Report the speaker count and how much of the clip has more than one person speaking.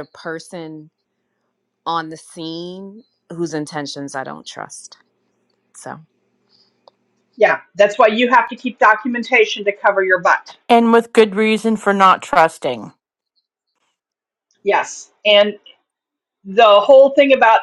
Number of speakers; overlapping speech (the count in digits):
3, no overlap